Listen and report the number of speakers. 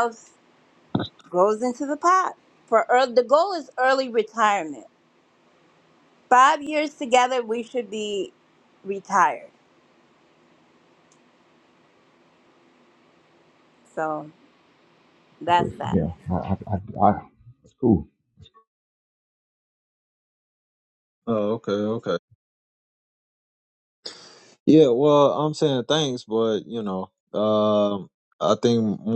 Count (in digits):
3